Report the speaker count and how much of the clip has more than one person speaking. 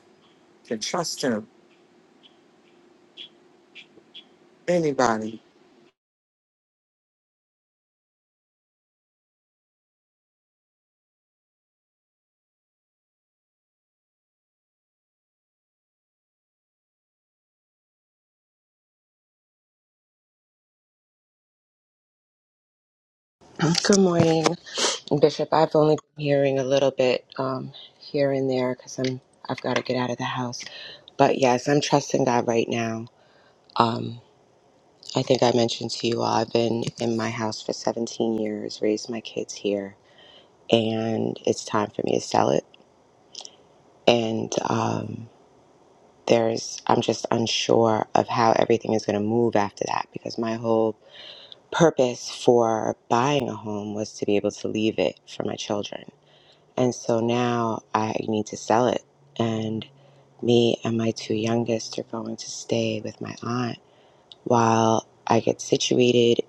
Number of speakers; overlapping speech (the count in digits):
2, no overlap